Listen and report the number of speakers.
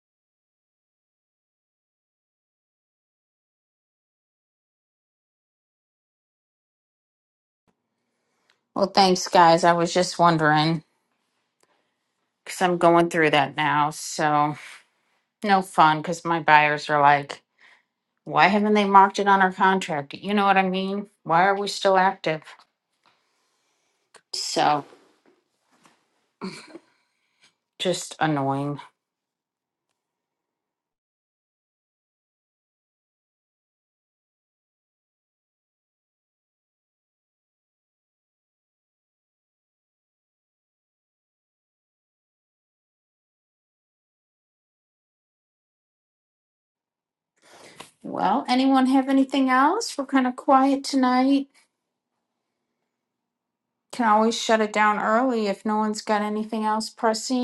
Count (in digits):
1